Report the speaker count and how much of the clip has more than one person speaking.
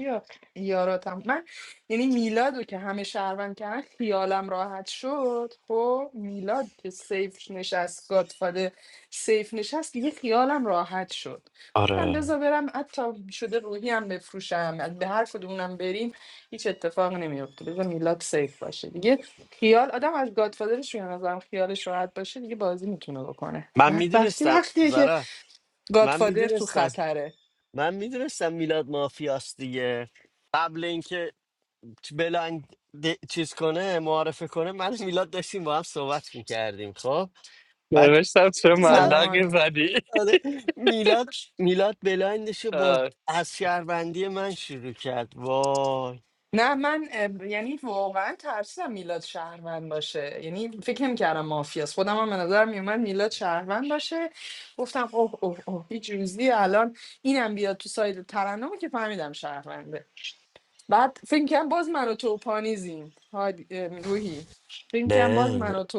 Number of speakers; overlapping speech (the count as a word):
three, about 7%